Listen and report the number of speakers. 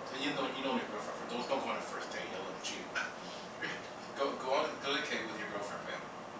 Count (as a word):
one